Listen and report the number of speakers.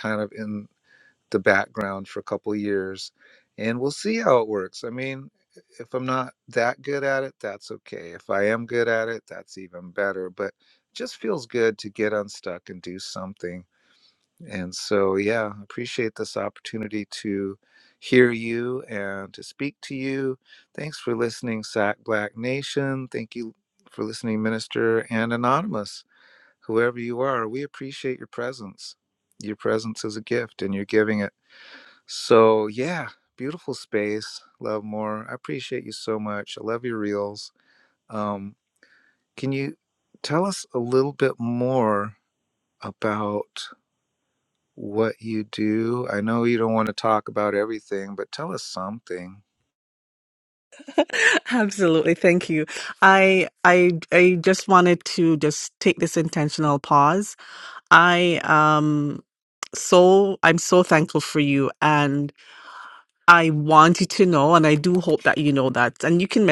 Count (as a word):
two